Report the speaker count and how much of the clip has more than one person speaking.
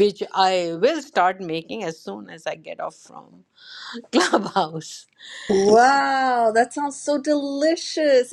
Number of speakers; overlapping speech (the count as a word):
two, no overlap